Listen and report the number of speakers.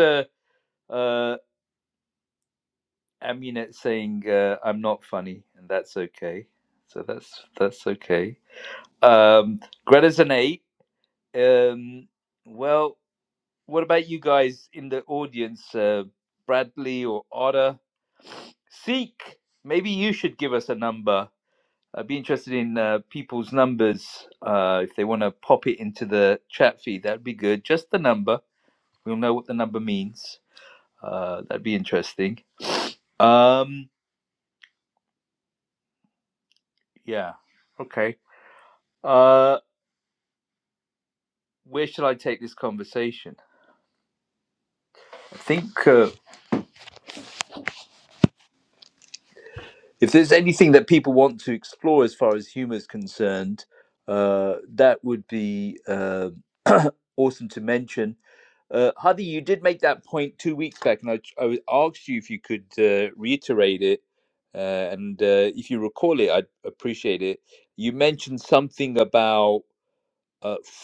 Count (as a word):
one